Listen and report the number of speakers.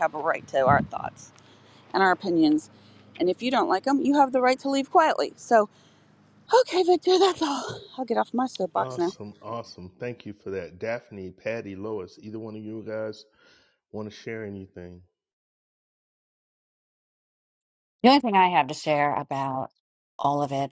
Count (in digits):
3